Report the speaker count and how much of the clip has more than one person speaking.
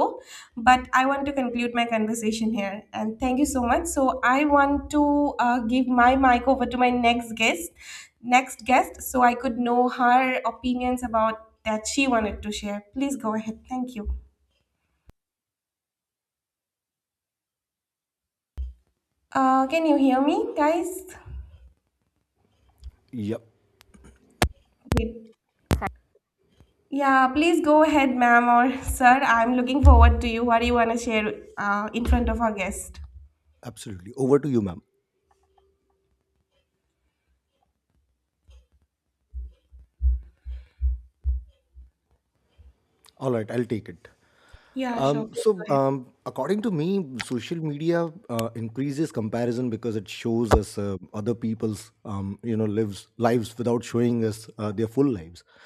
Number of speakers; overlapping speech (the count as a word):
two, about 2%